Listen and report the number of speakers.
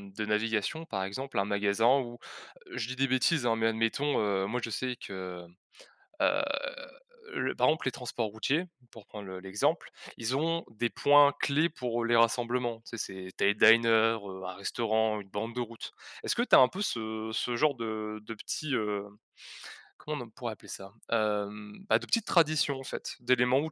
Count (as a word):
one